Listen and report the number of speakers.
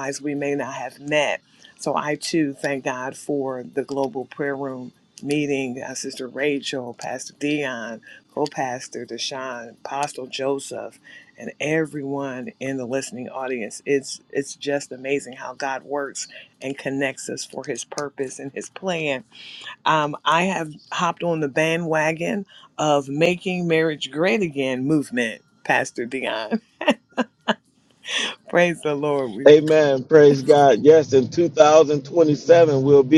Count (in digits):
2